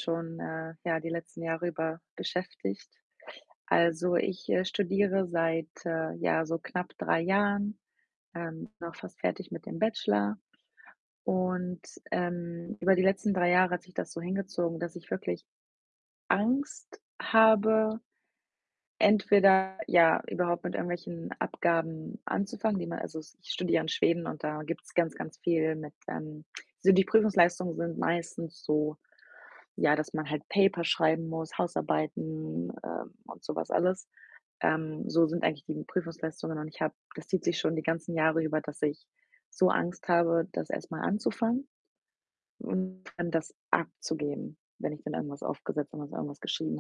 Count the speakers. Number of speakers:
1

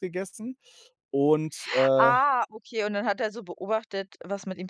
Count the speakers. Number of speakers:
2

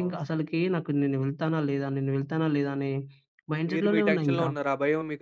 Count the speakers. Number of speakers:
2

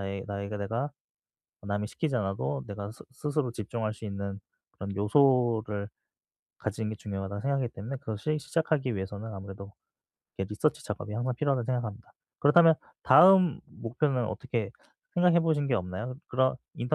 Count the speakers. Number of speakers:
1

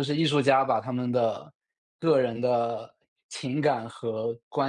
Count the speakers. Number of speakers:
1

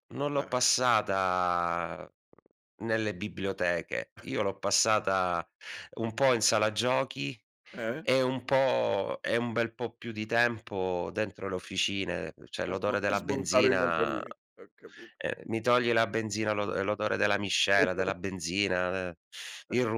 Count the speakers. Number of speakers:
2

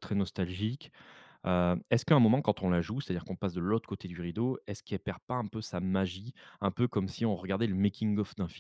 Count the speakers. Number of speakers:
1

